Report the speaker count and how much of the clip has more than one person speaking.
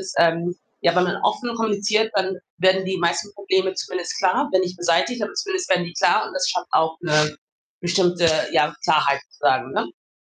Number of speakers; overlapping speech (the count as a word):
one, no overlap